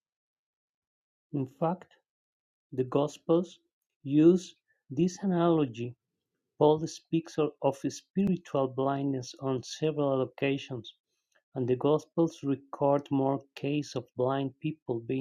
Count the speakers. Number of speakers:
1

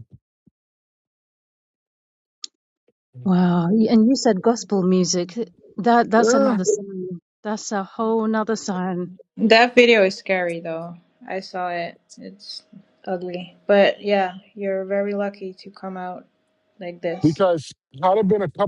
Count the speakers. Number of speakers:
3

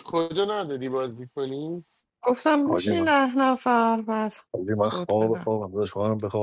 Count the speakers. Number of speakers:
3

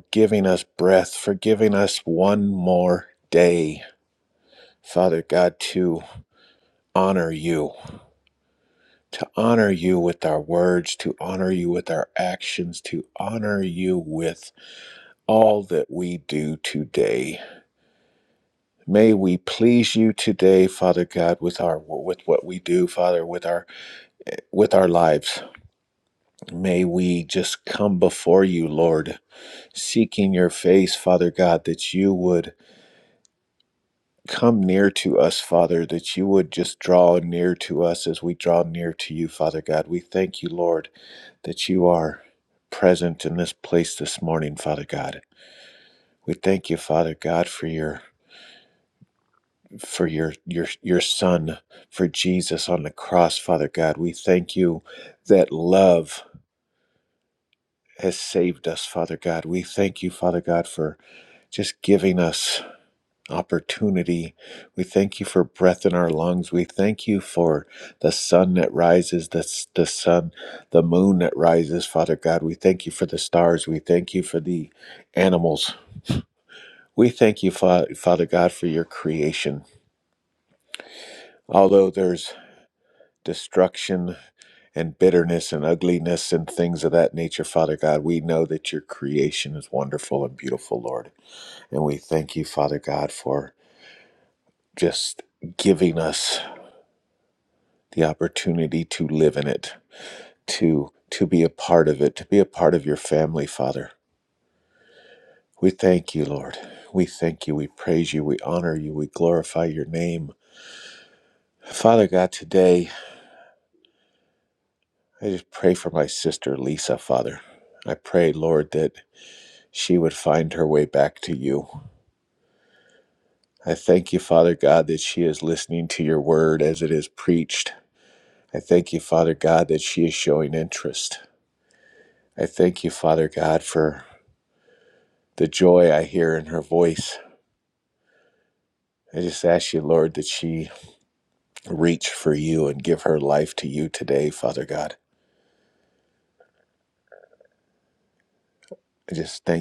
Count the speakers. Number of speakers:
1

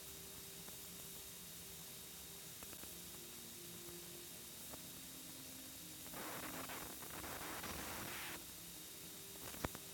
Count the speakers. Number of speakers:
0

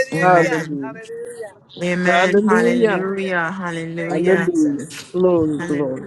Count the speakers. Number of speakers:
3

